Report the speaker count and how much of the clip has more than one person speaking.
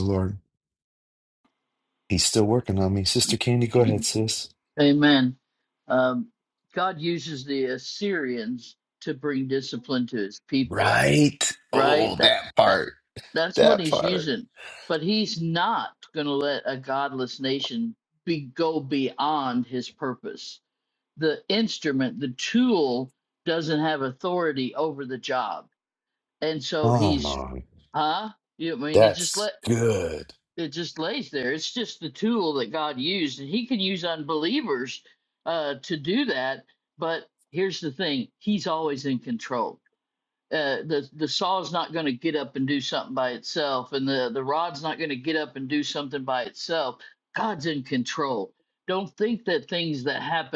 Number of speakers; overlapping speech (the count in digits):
2, about 6%